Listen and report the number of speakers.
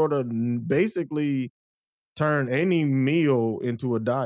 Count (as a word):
one